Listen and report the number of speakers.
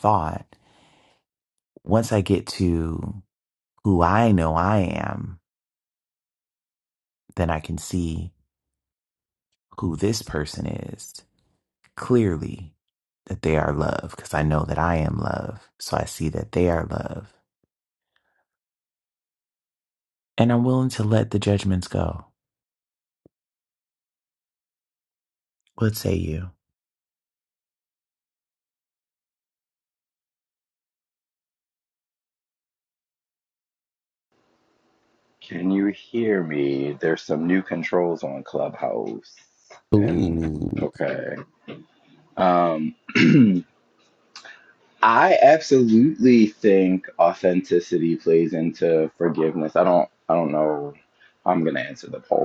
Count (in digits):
2